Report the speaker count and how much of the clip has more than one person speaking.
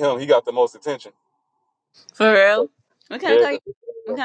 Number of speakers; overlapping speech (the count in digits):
2, about 10%